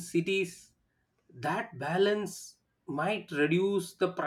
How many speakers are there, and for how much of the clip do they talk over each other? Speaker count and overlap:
one, no overlap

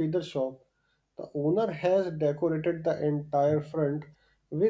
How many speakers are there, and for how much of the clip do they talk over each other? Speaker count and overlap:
one, no overlap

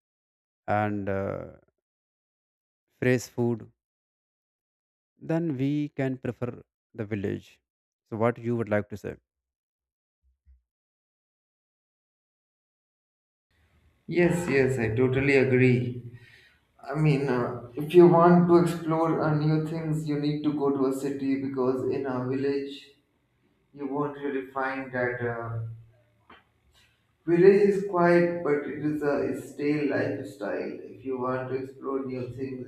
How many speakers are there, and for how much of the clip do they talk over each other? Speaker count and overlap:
two, no overlap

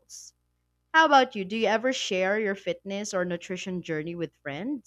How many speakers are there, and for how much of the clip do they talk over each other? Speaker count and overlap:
one, no overlap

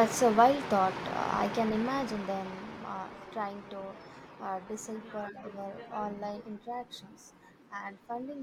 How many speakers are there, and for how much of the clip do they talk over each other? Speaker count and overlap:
one, no overlap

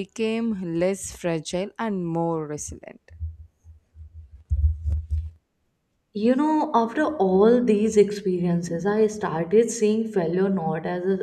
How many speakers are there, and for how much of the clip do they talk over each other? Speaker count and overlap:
two, no overlap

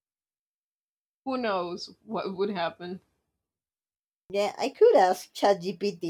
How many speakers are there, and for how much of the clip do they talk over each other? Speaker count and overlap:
two, no overlap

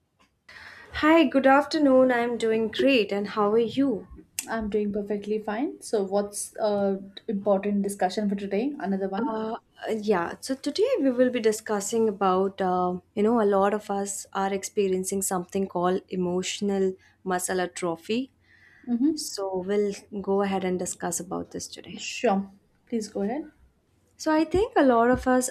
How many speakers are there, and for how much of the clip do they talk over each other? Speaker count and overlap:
two, about 1%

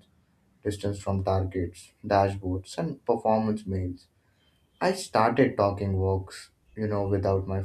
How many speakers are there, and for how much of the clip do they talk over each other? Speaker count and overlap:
one, no overlap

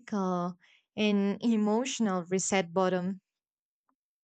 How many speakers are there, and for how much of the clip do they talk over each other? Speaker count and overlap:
one, no overlap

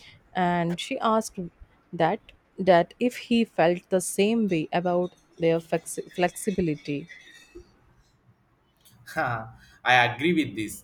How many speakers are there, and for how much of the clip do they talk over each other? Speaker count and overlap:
two, no overlap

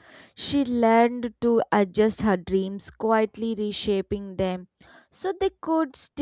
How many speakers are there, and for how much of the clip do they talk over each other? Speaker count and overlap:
one, no overlap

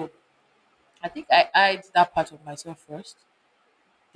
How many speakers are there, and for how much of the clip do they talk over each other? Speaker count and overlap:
one, no overlap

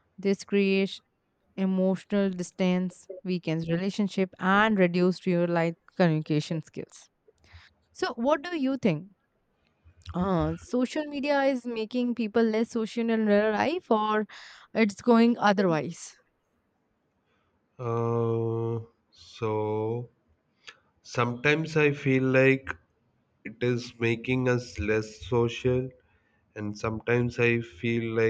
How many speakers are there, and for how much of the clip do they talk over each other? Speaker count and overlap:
two, no overlap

